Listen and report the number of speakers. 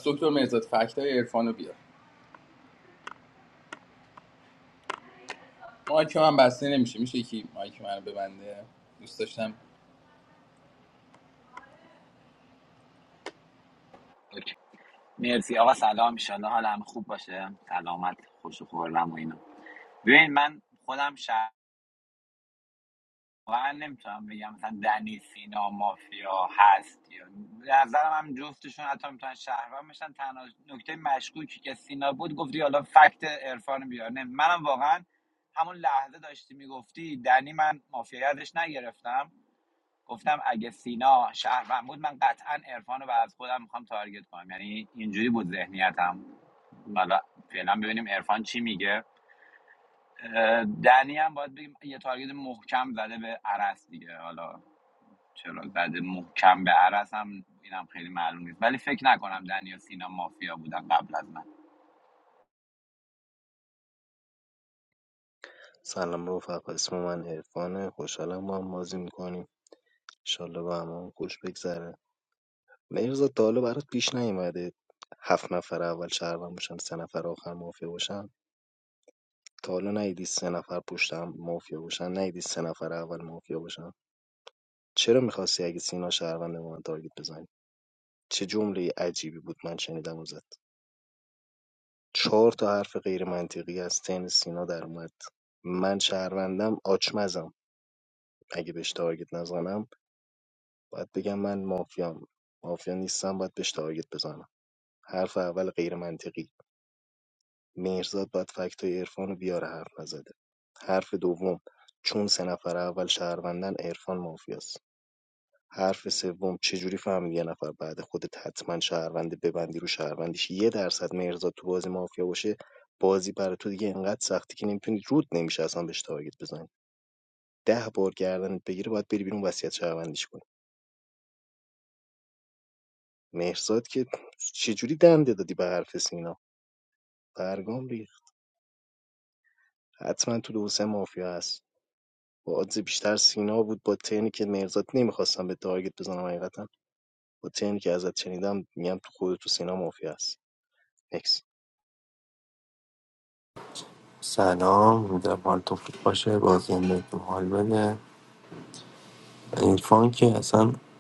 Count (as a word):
four